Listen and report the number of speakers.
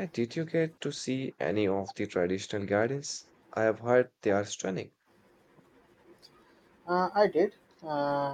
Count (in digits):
2